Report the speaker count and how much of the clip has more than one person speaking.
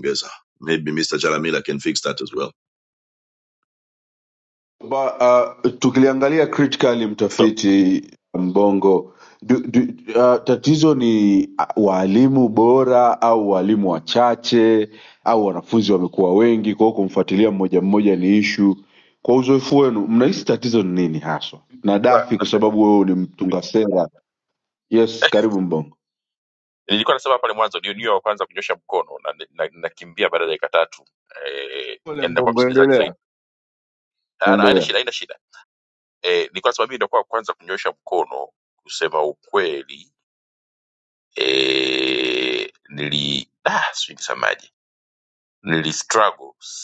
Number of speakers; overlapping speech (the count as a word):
three, about 5%